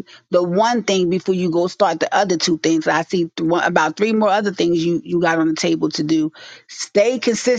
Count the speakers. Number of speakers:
1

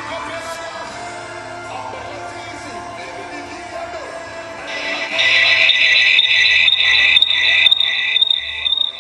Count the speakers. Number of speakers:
0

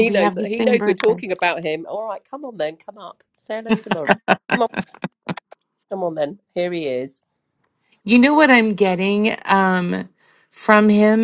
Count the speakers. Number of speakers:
2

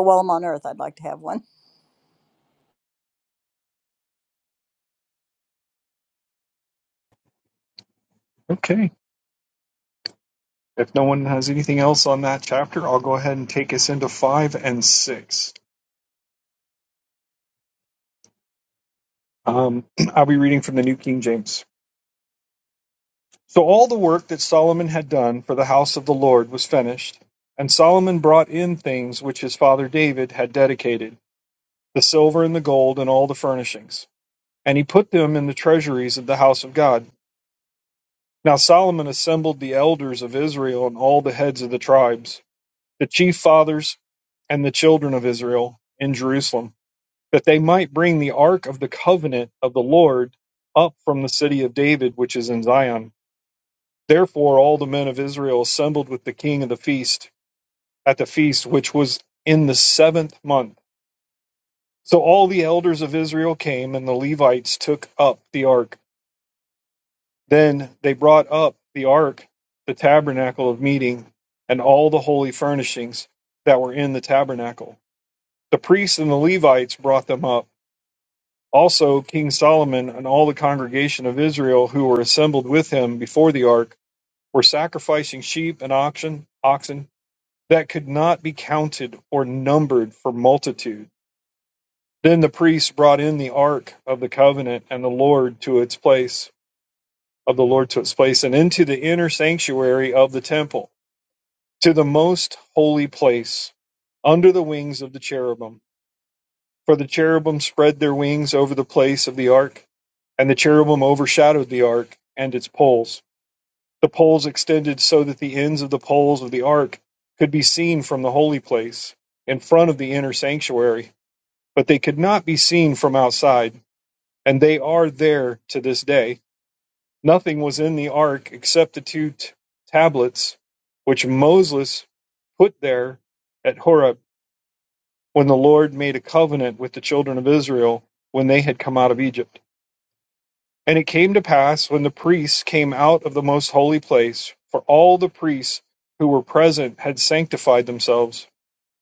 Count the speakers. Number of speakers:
2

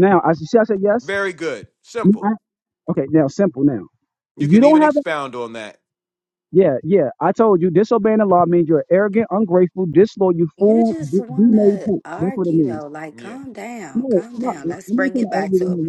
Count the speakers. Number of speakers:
3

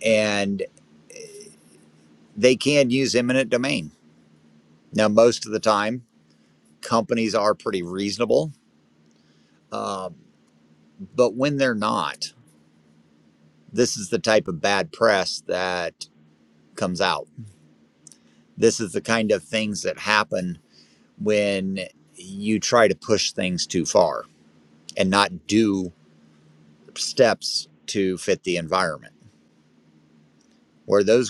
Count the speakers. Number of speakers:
1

